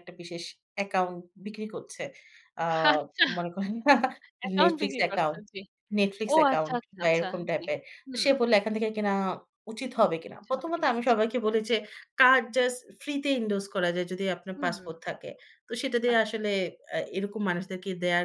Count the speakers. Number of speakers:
2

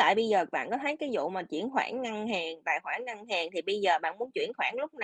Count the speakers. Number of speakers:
1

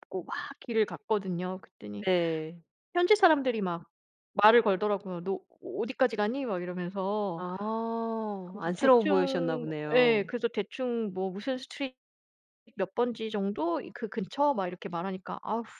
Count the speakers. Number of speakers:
2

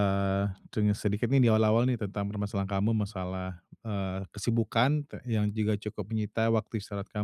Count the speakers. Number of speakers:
1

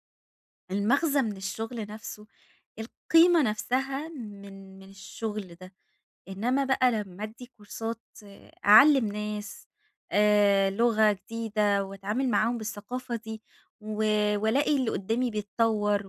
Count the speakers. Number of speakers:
1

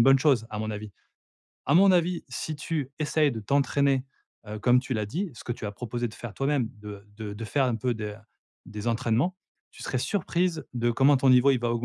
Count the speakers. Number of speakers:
1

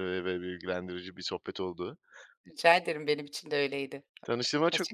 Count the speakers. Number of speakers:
2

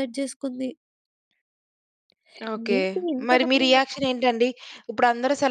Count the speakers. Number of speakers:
2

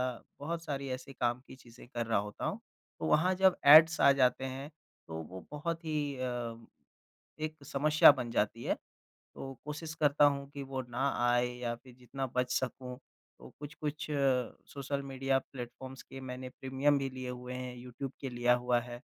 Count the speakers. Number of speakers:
1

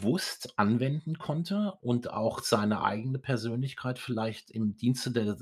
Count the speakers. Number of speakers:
1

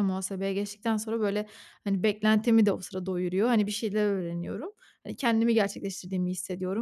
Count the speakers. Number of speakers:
1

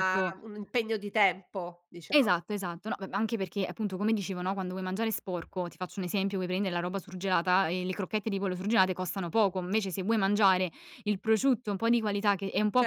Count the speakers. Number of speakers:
2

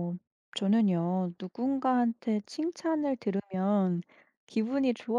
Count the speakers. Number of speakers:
1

